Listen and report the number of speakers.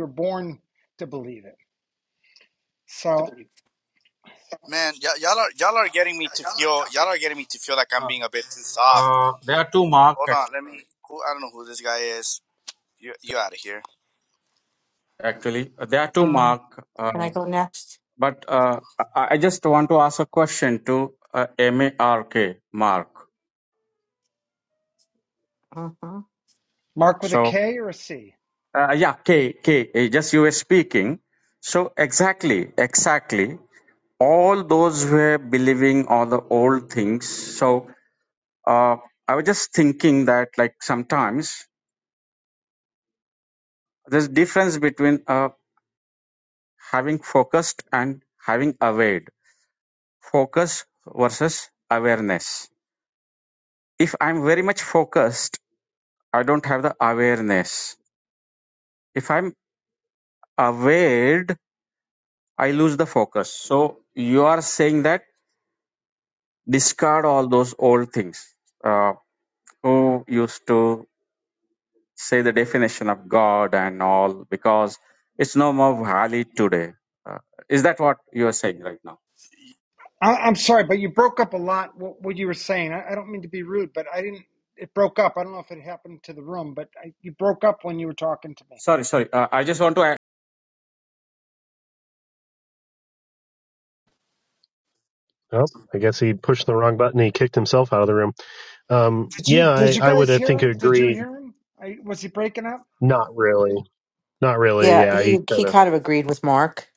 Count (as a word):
five